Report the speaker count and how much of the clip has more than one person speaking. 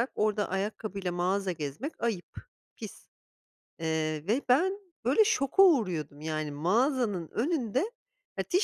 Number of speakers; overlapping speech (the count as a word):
one, no overlap